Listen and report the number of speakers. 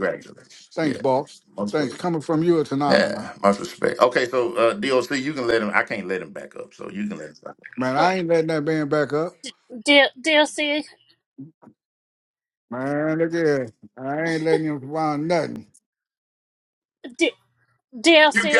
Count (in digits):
3